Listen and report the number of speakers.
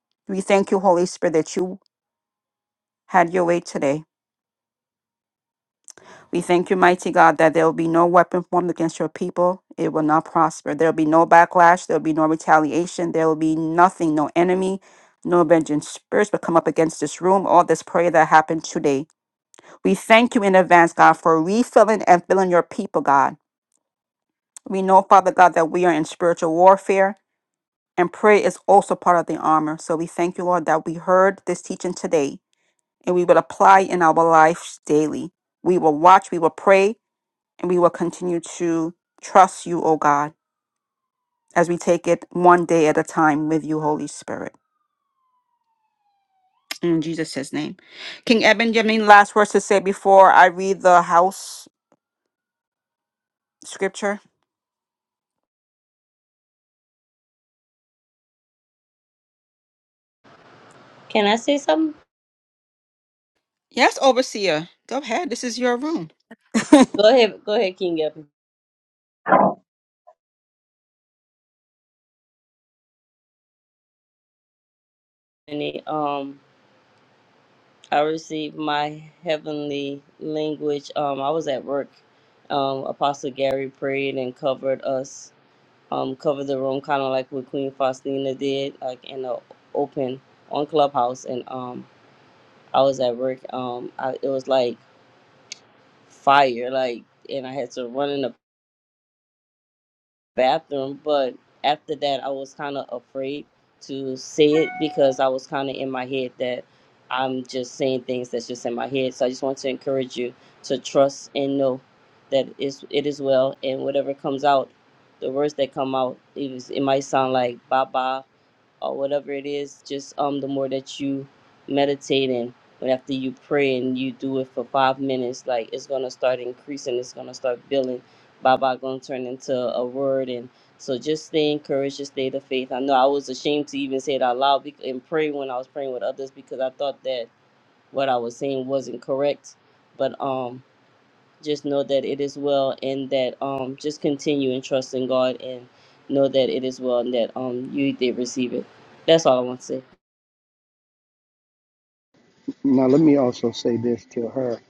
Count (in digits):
3